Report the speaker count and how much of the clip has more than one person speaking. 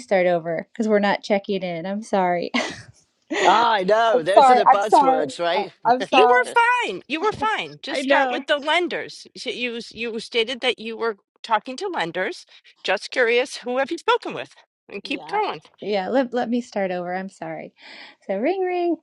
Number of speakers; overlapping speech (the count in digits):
3, about 16%